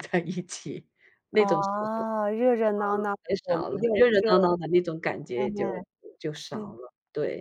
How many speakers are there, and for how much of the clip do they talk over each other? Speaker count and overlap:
2, about 27%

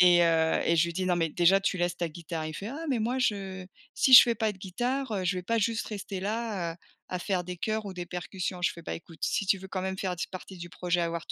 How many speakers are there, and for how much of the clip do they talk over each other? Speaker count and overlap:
1, no overlap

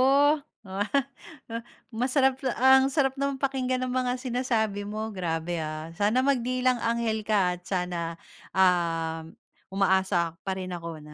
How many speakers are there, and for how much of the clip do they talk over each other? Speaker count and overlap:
1, no overlap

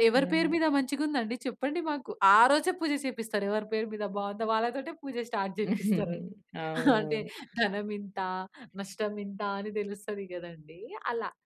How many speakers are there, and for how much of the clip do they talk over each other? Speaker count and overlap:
2, about 5%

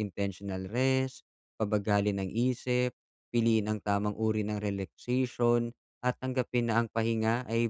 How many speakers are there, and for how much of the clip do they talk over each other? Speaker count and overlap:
1, no overlap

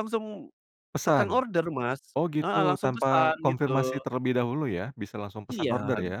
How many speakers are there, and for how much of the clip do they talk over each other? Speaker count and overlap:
2, about 32%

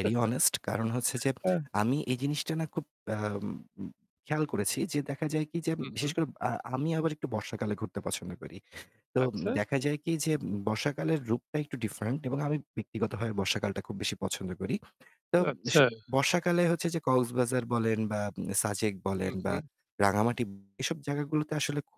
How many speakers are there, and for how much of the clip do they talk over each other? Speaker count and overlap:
2, about 7%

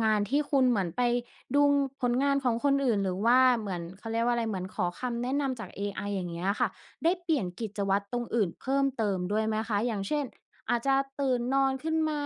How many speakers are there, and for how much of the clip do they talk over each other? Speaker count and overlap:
1, no overlap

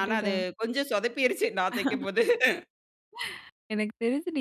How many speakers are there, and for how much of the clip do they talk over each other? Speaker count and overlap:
2, about 9%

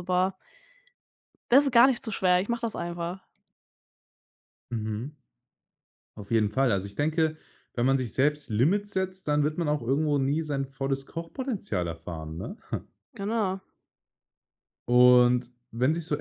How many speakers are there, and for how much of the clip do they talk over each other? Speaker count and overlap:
2, no overlap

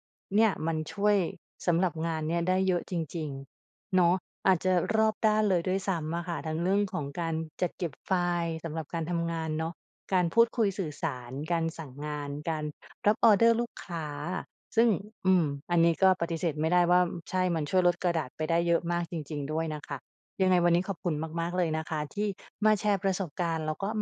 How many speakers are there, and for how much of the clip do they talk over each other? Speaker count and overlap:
1, no overlap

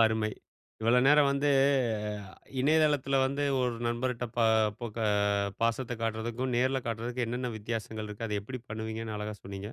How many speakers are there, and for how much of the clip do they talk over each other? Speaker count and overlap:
1, no overlap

